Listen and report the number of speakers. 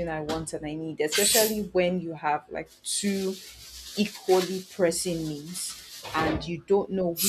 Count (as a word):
one